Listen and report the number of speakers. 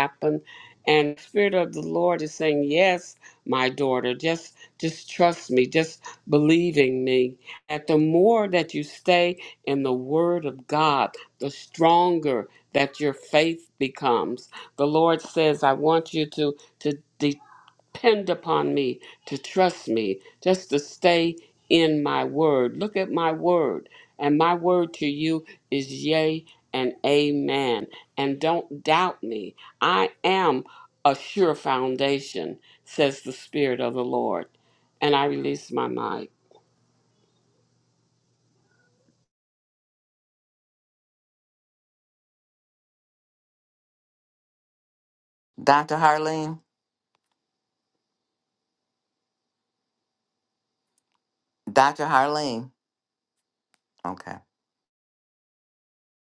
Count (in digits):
2